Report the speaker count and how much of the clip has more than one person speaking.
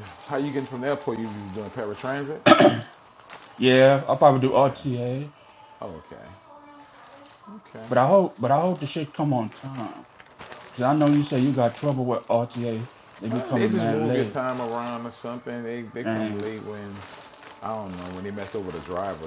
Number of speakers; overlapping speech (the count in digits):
2, about 9%